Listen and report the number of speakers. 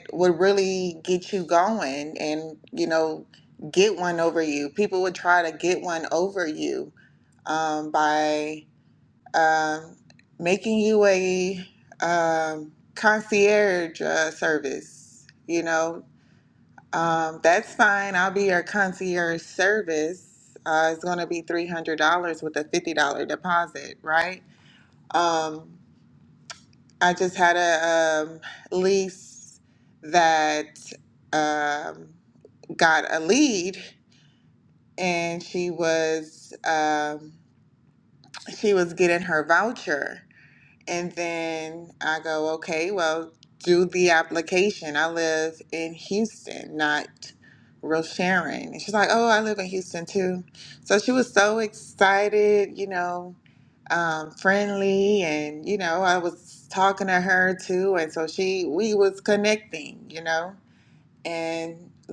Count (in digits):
1